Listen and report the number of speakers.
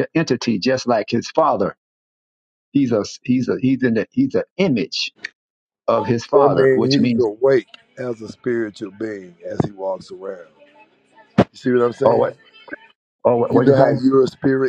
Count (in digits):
2